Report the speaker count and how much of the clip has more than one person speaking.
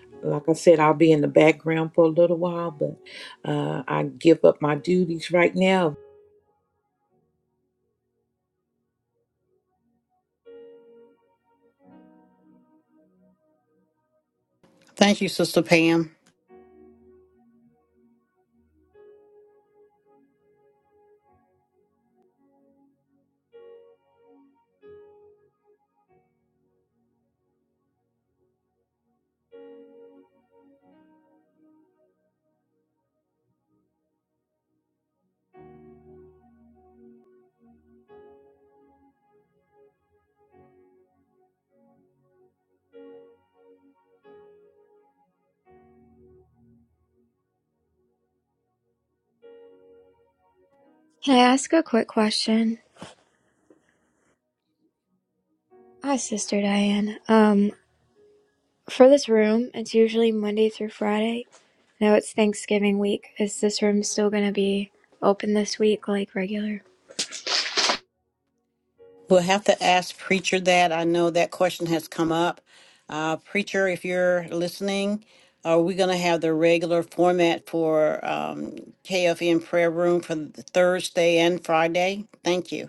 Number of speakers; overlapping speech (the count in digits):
3, no overlap